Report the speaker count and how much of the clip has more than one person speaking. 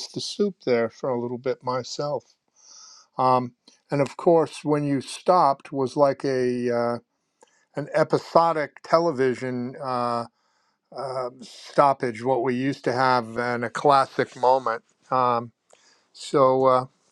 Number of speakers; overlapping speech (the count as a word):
one, no overlap